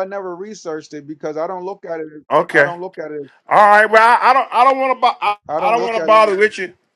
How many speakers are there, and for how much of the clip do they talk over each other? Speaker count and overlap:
2, about 18%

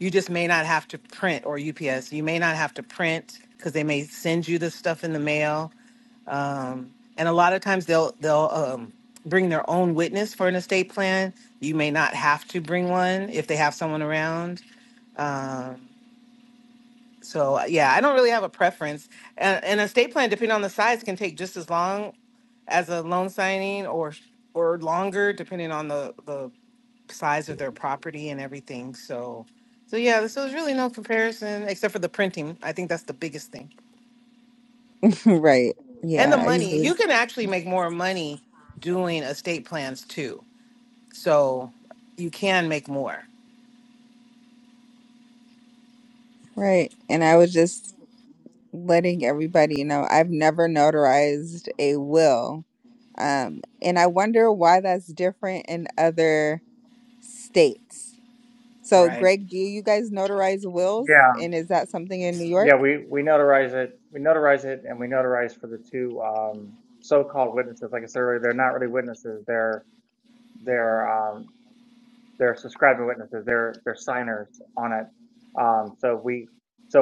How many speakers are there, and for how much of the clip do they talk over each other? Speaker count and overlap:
3, about 2%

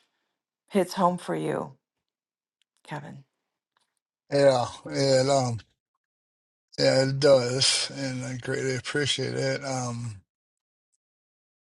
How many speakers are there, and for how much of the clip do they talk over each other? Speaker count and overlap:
2, no overlap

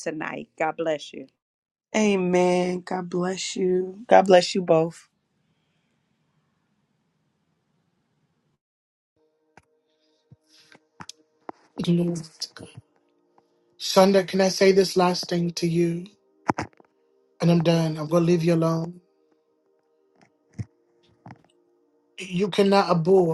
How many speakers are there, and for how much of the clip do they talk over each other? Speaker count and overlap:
3, no overlap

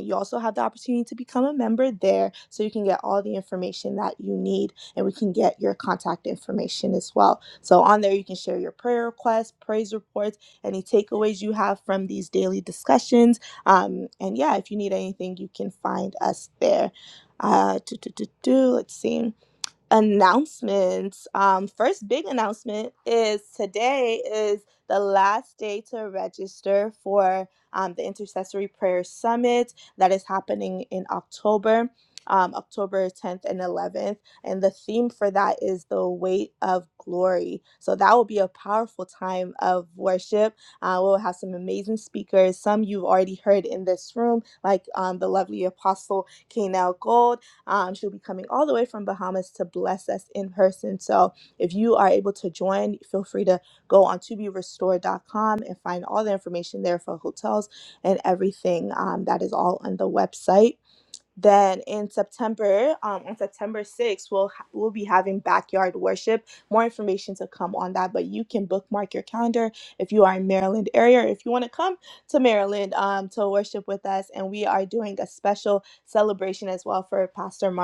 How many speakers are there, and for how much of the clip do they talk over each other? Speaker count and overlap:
1, no overlap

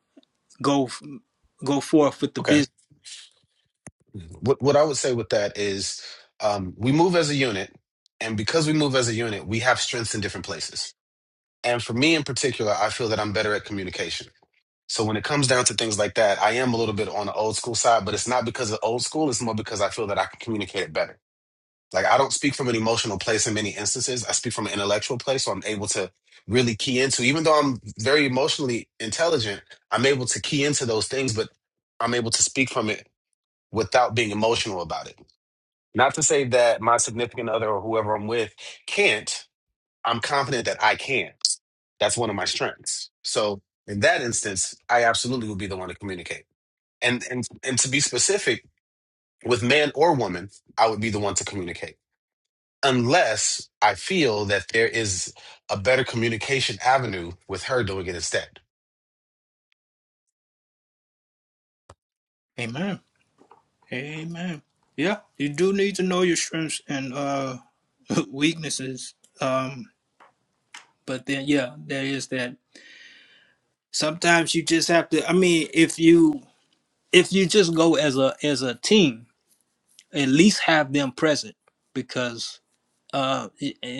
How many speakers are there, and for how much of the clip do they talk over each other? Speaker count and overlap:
2, under 1%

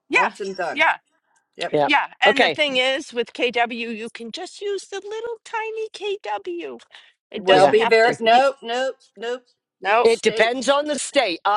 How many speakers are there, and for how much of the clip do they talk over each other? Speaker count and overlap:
3, about 20%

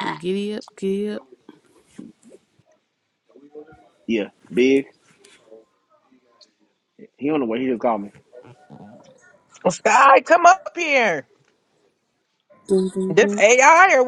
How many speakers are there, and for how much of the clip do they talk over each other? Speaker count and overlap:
3, about 2%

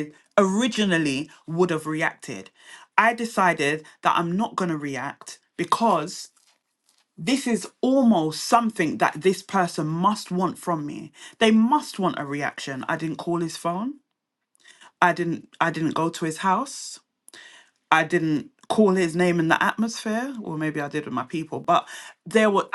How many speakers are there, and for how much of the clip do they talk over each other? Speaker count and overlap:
1, no overlap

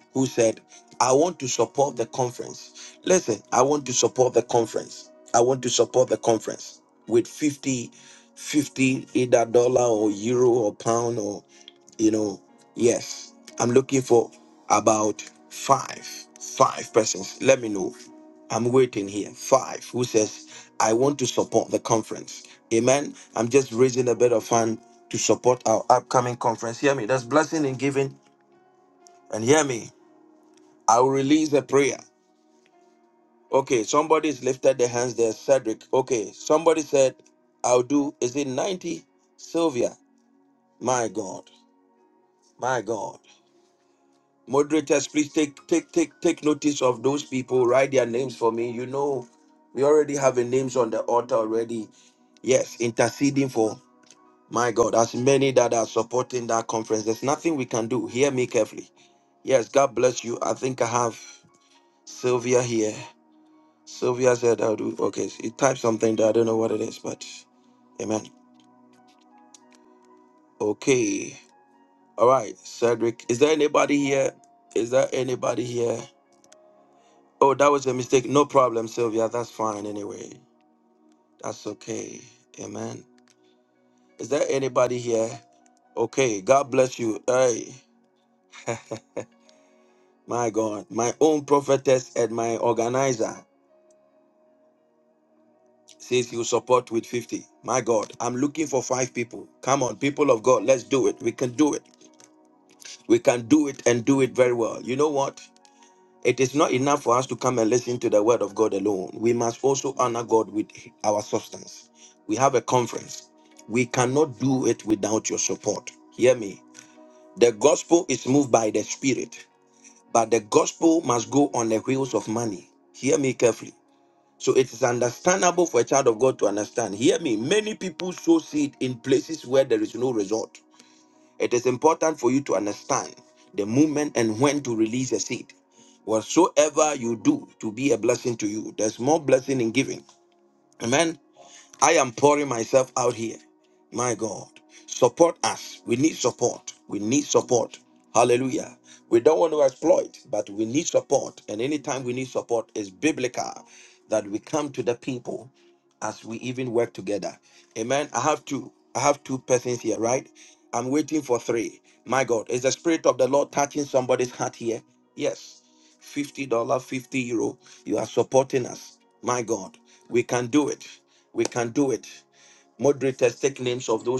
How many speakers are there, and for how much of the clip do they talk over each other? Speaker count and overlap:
1, no overlap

